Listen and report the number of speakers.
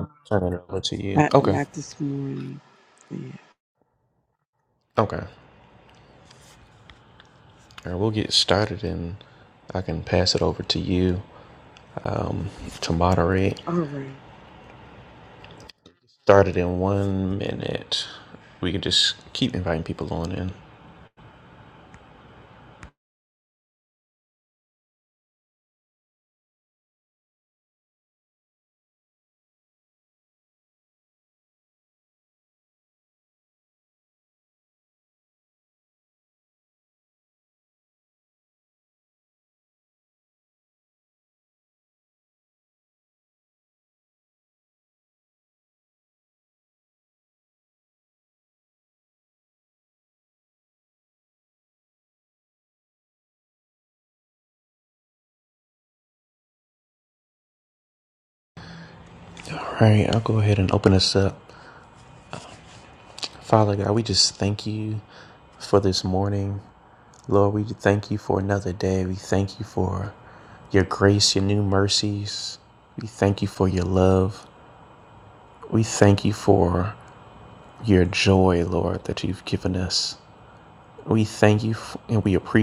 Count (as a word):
two